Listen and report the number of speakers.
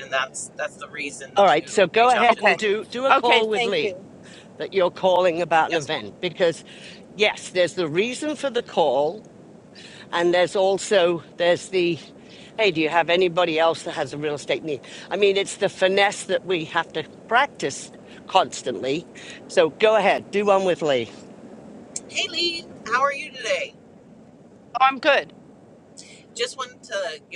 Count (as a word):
three